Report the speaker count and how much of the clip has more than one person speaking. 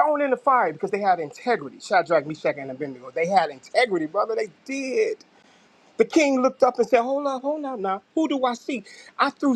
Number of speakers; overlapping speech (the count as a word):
one, no overlap